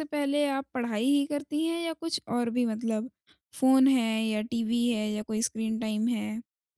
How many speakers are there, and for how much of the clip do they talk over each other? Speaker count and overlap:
one, no overlap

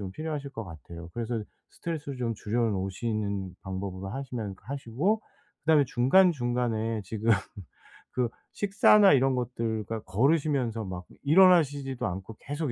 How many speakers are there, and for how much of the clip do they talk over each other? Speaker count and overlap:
one, no overlap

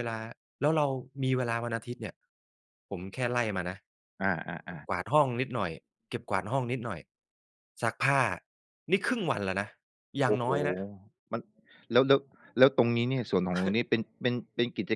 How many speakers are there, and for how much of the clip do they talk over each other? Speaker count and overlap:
two, about 3%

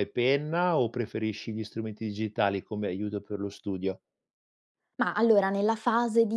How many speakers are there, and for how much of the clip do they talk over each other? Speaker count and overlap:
two, no overlap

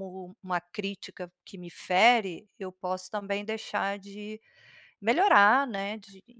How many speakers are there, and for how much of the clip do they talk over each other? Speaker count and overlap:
one, no overlap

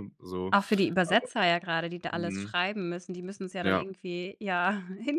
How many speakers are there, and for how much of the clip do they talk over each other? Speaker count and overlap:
two, about 16%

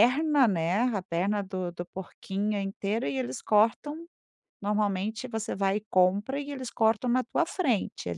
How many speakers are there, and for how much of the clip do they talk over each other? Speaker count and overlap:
one, no overlap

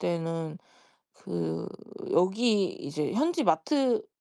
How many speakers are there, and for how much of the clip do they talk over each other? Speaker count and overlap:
one, no overlap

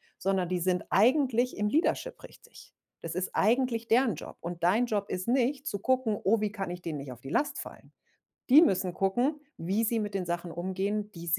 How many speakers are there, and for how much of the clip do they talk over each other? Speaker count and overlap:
one, no overlap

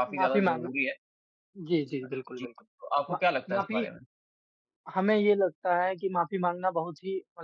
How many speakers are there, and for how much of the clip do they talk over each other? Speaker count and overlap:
two, about 21%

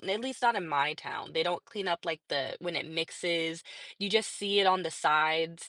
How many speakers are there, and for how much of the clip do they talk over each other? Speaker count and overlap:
one, no overlap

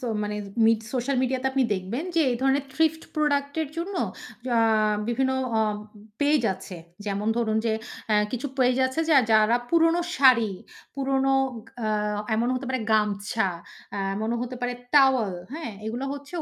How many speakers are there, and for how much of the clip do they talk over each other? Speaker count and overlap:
one, no overlap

